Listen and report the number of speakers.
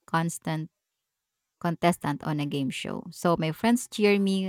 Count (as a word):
one